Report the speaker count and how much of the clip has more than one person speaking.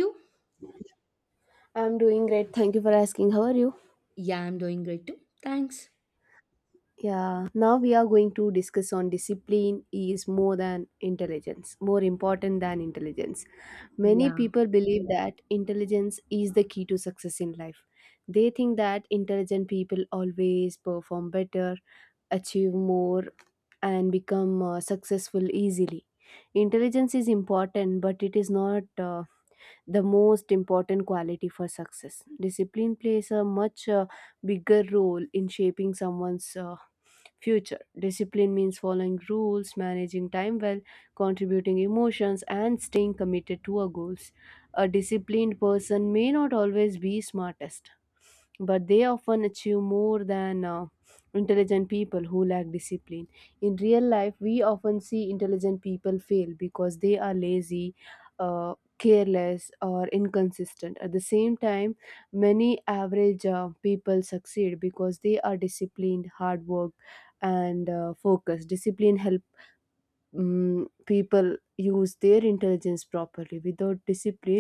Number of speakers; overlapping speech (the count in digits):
2, about 1%